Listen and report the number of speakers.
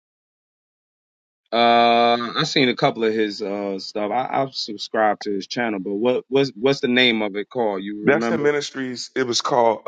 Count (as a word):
two